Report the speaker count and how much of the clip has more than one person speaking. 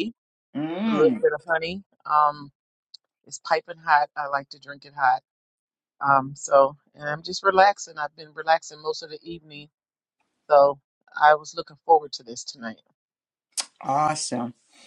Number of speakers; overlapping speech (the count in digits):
2, about 2%